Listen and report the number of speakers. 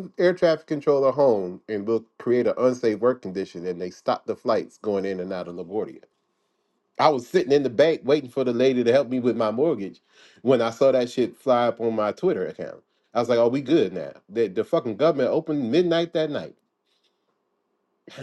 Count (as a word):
one